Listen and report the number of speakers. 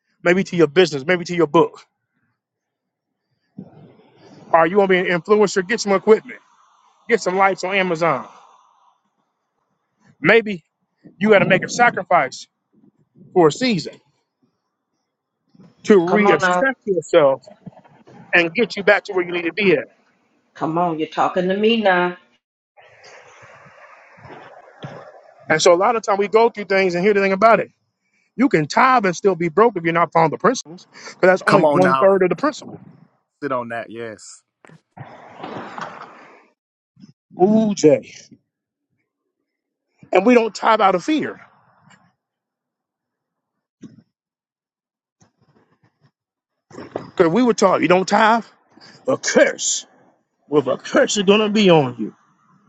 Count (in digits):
3